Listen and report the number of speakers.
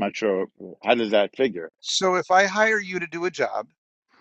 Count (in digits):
2